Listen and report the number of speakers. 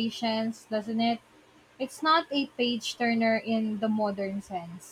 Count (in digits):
1